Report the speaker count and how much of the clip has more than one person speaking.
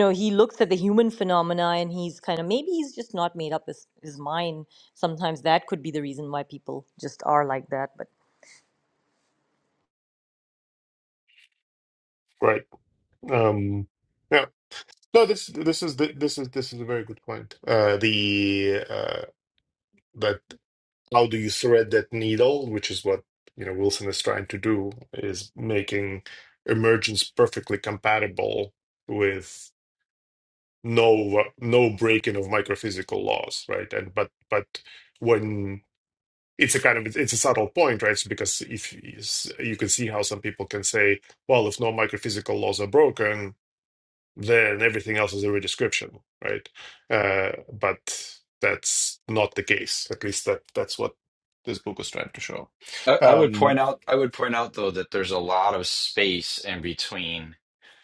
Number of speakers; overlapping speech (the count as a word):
three, about 1%